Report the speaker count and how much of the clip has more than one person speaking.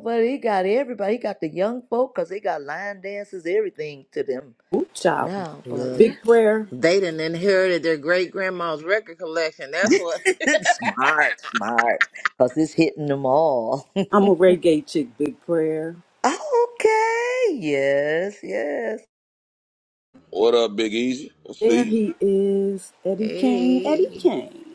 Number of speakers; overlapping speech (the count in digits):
4, about 8%